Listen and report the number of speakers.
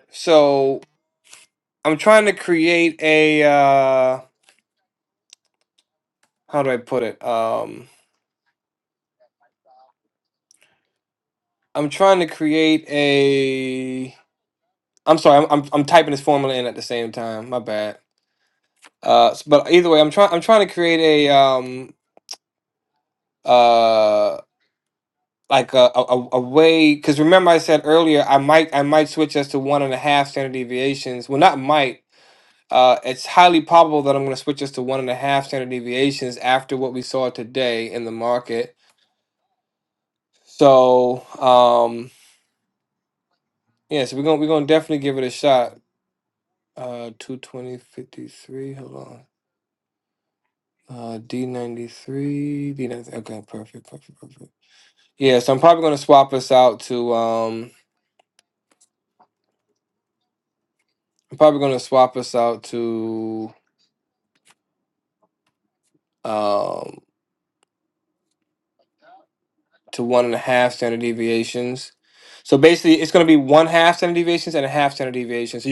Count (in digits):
1